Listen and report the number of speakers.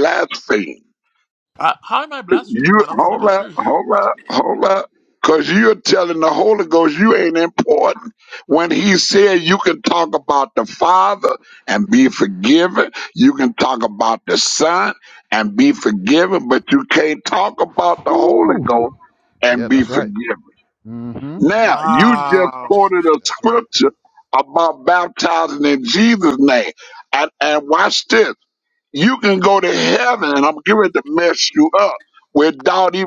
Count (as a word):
three